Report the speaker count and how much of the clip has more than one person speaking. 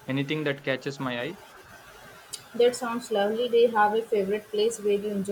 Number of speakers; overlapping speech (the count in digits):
2, no overlap